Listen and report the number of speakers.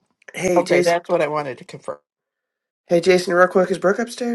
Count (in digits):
2